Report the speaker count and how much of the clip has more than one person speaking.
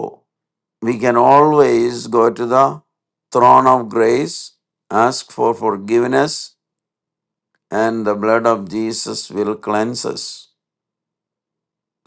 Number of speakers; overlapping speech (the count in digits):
1, no overlap